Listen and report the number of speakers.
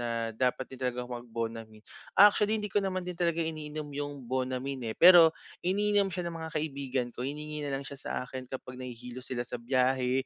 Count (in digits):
1